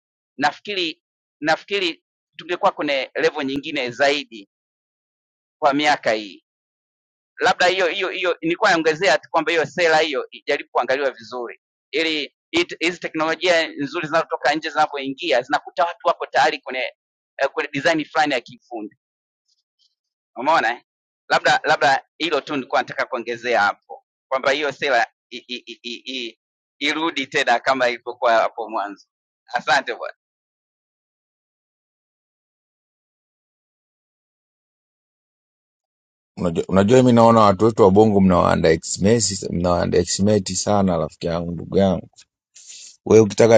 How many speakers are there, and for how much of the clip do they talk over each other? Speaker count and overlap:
2, no overlap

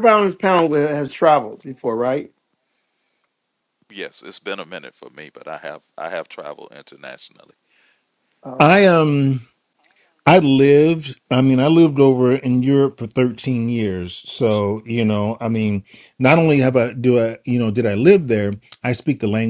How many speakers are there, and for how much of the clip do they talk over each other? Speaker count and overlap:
3, about 1%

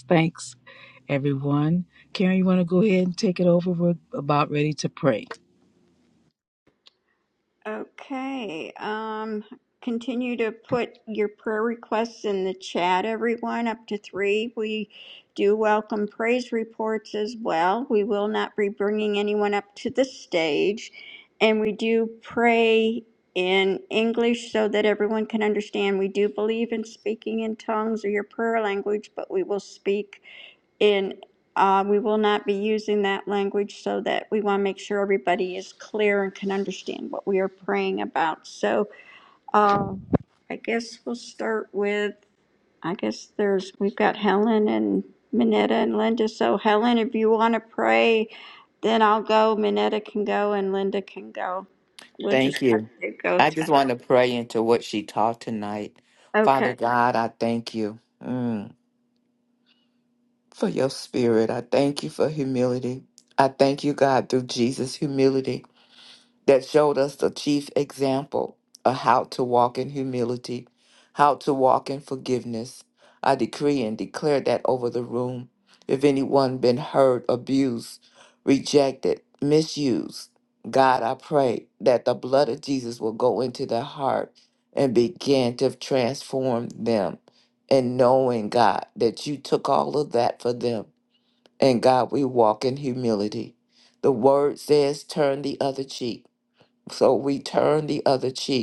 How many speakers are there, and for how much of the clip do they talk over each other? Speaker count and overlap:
3, about 1%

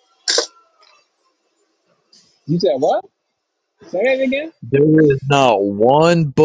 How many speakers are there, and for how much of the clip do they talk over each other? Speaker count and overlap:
2, no overlap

